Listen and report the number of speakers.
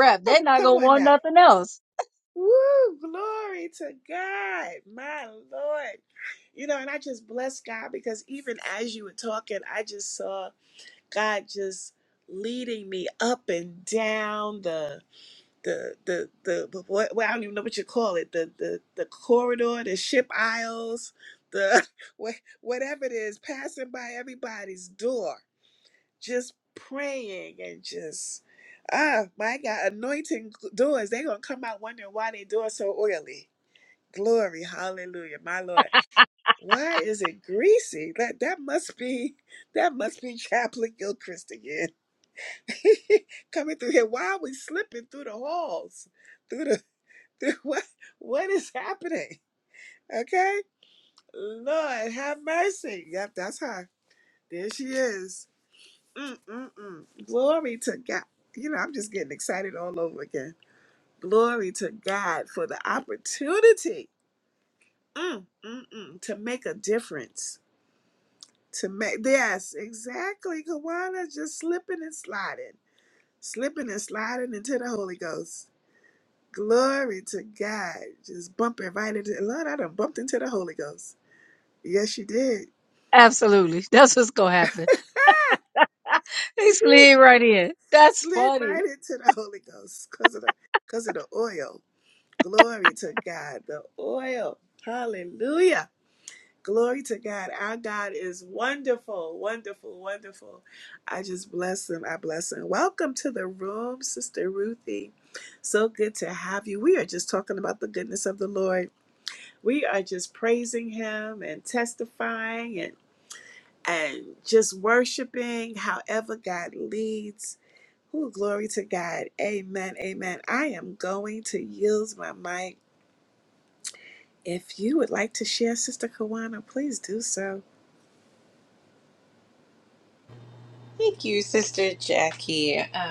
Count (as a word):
three